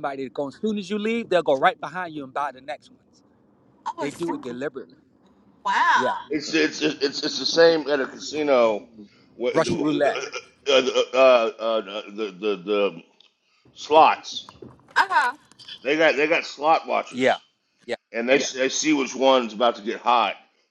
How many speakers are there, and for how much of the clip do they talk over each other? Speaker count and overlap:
three, about 7%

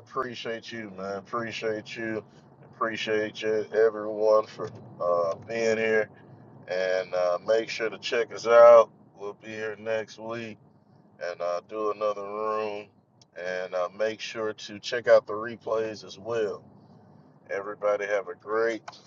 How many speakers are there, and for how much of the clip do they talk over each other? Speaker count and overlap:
one, no overlap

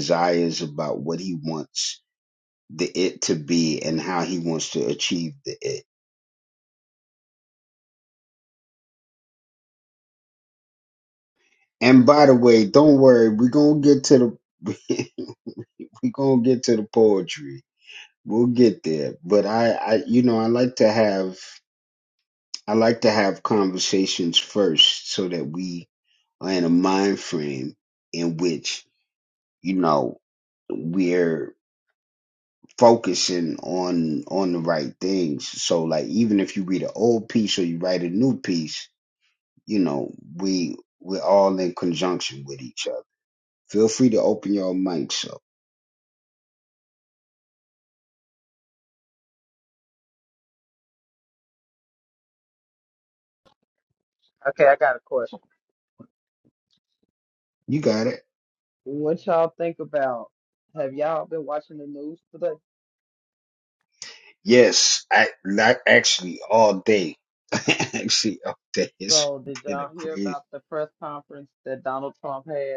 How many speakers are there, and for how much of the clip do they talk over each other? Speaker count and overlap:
two, about 1%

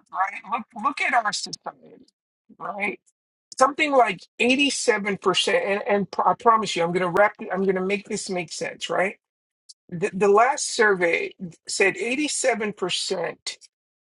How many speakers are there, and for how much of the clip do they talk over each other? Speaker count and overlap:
one, no overlap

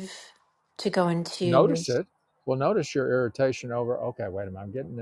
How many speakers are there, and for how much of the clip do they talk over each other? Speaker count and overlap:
two, about 8%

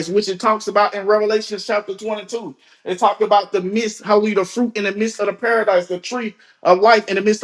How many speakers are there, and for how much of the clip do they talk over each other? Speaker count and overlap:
one, no overlap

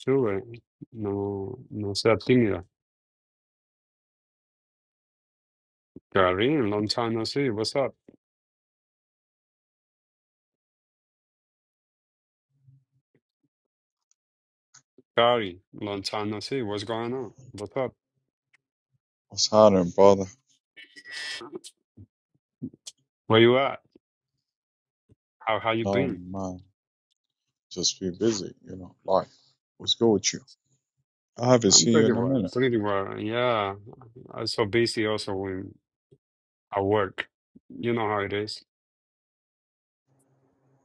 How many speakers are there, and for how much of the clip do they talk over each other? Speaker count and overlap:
two, about 3%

